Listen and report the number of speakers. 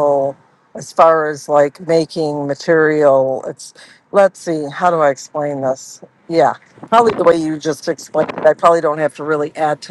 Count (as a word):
one